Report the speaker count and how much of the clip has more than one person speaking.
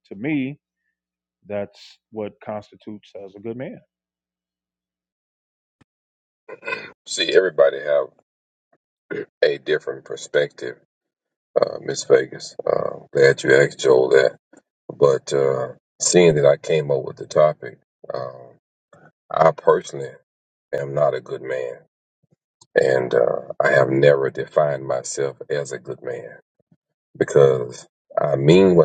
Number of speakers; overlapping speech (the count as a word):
two, no overlap